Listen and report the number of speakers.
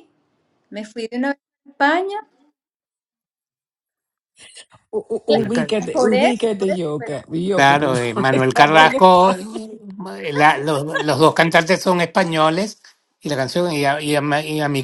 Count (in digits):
3